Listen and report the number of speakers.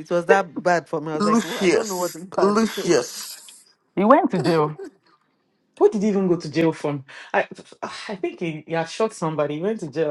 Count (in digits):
3